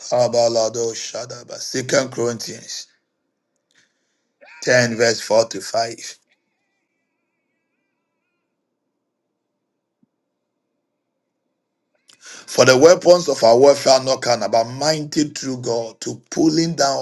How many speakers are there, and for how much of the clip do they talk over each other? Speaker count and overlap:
1, no overlap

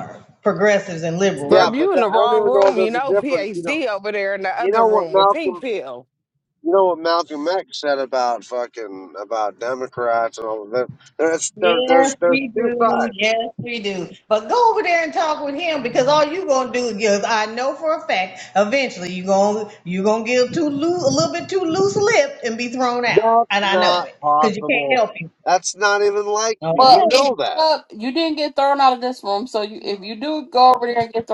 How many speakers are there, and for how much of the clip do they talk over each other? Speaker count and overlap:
4, about 24%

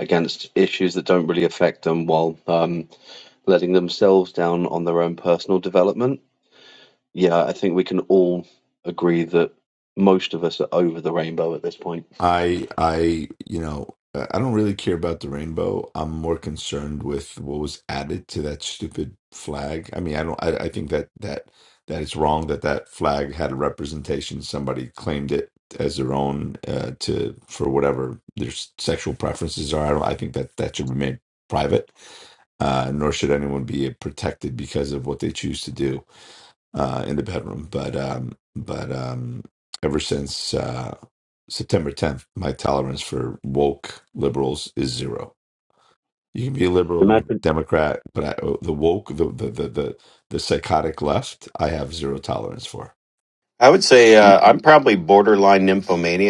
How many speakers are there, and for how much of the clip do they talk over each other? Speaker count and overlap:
3, about 1%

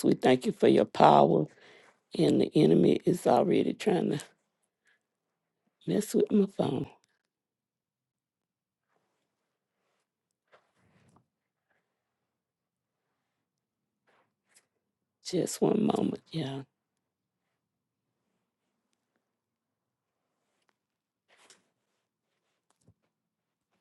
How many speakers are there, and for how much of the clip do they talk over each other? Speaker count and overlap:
1, no overlap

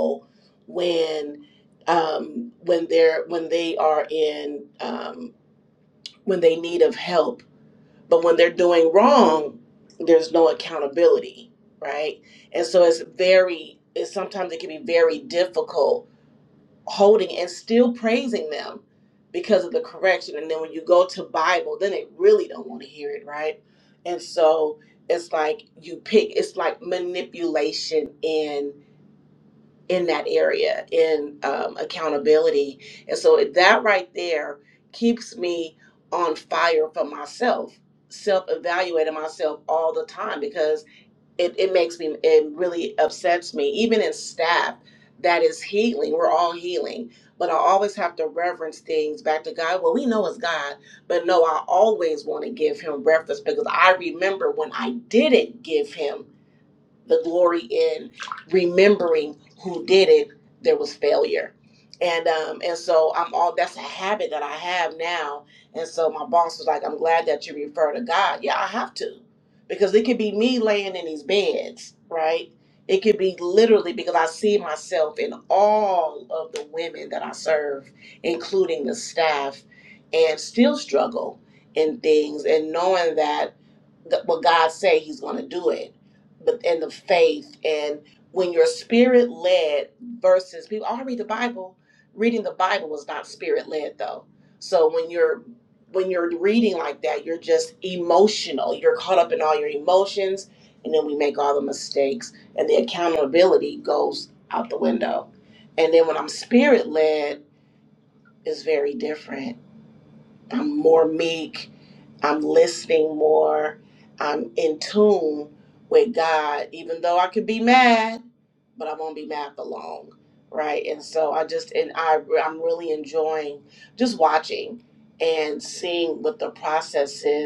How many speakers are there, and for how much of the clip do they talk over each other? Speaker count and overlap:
1, no overlap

